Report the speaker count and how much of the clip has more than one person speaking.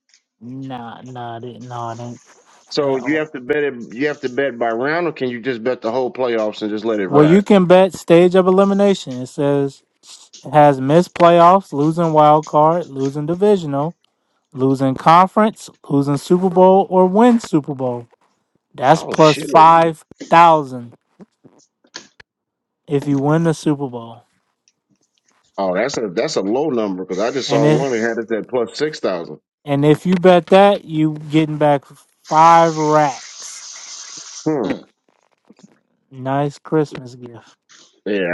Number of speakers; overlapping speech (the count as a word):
two, about 4%